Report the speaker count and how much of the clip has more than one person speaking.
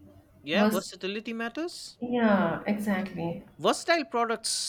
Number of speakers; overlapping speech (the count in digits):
2, about 6%